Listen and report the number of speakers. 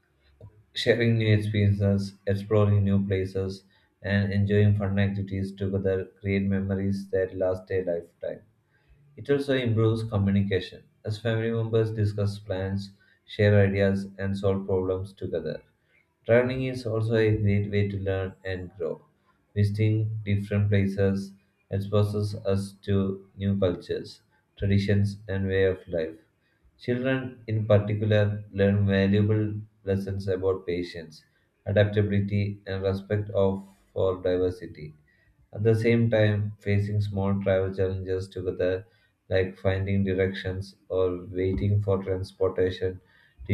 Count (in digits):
1